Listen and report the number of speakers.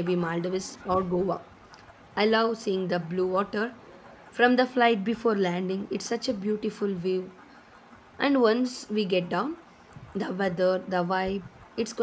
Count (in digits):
1